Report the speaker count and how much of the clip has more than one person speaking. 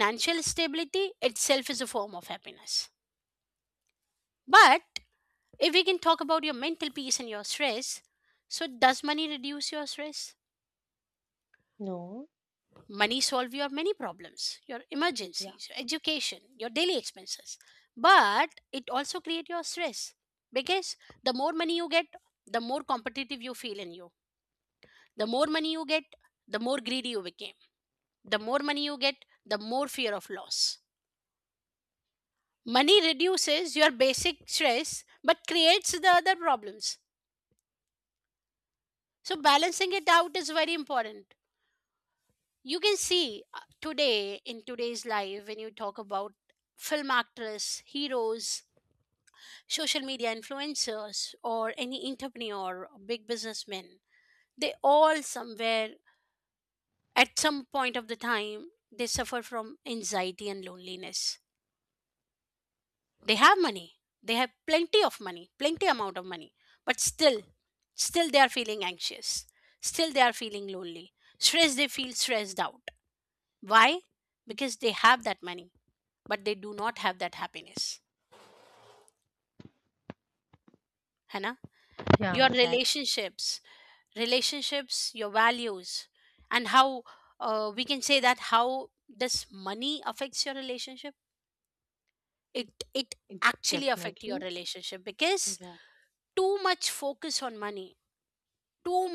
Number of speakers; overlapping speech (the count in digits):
2, about 1%